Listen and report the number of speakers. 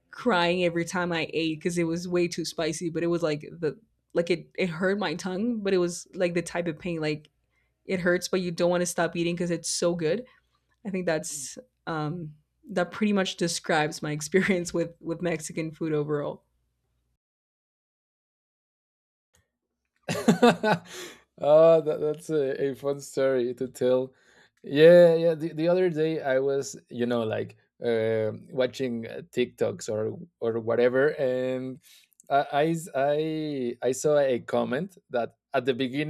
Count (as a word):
two